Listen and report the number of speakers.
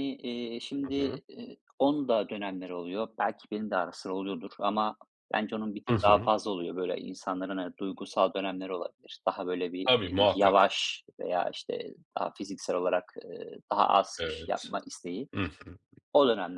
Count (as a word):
two